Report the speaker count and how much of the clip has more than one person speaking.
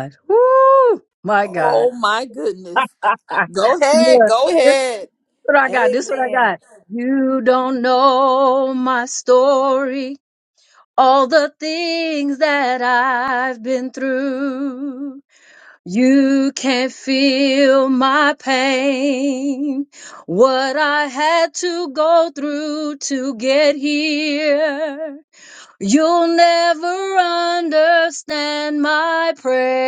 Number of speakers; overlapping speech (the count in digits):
2, about 6%